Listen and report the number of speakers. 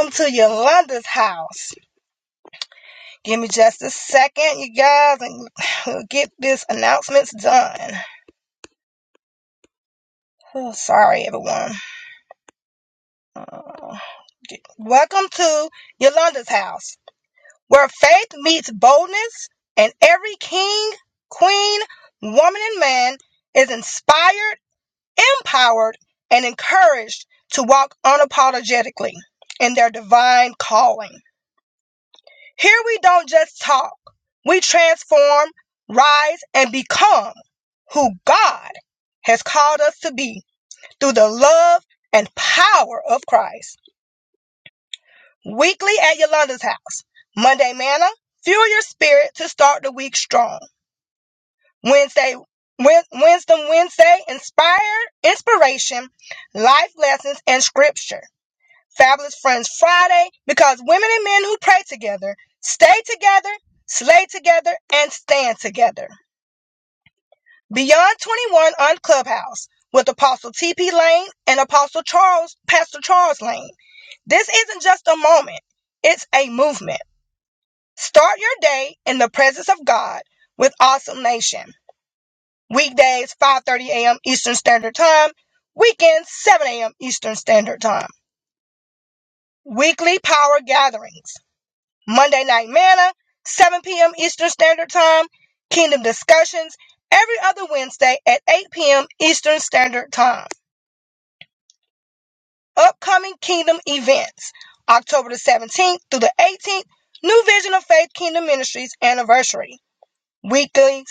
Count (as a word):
one